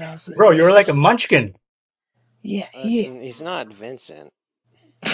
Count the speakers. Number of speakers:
three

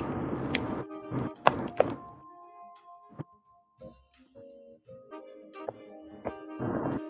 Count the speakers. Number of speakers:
zero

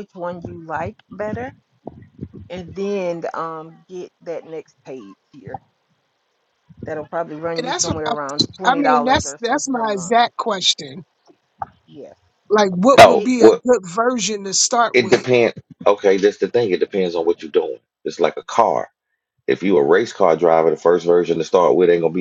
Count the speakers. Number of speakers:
three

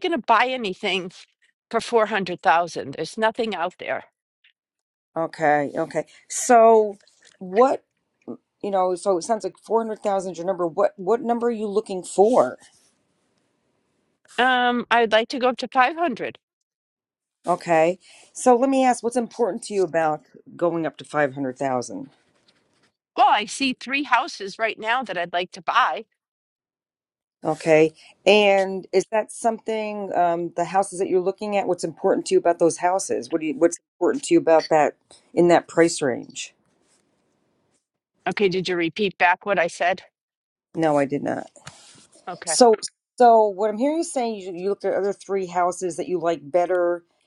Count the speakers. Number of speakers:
two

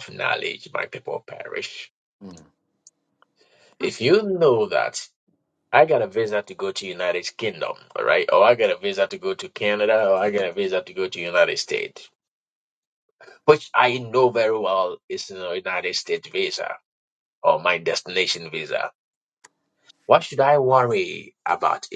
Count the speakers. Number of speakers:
one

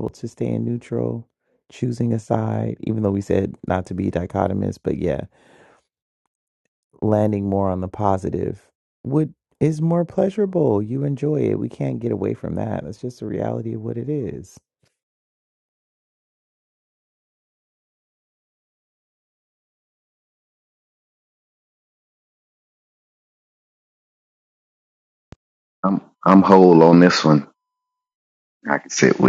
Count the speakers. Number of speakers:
two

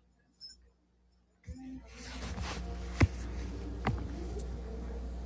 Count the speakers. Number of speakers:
zero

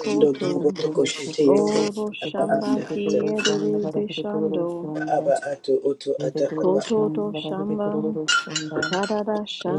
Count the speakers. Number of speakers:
three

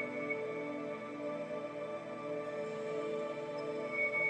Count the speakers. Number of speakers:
zero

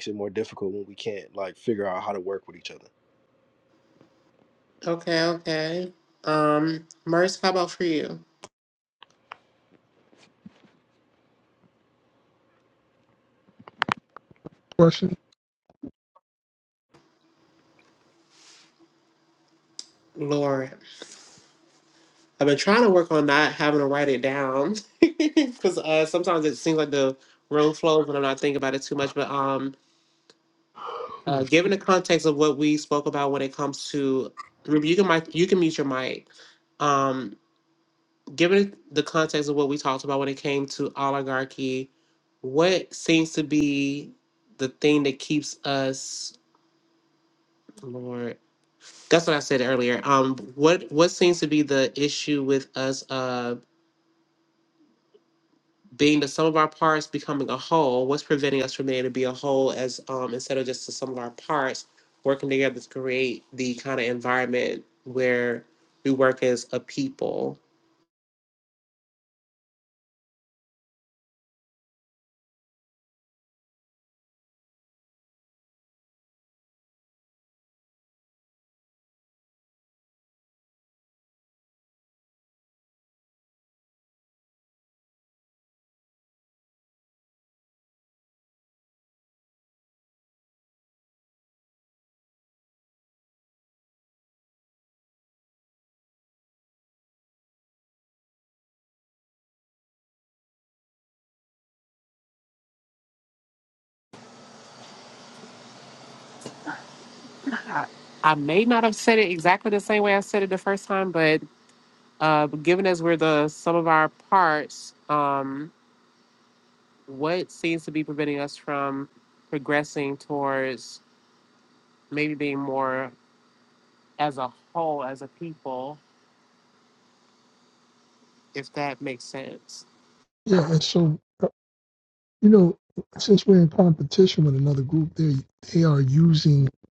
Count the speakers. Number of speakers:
three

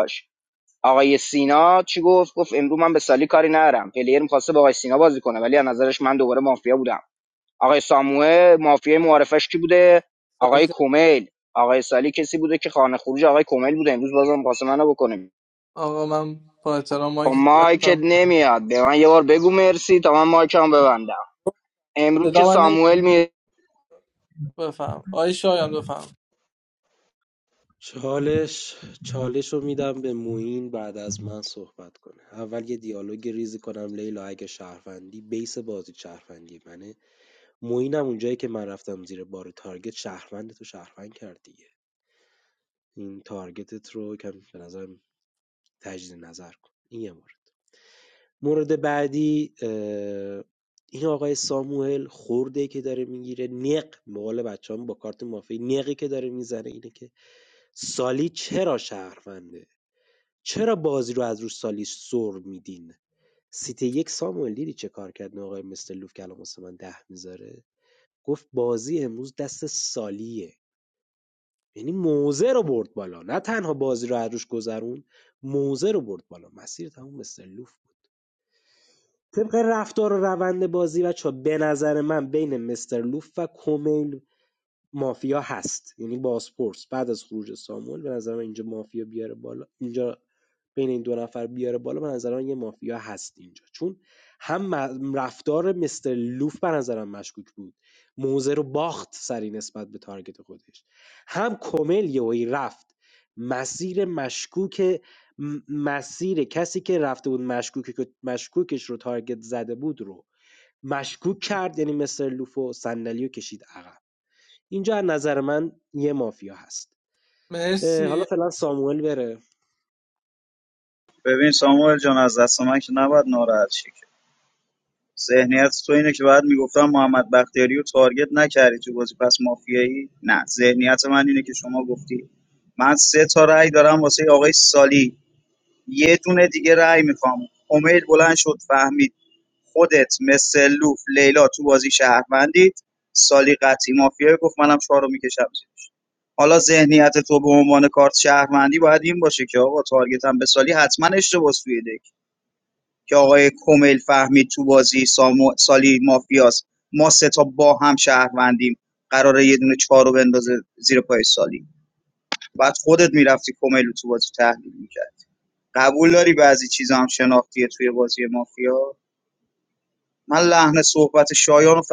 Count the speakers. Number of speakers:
four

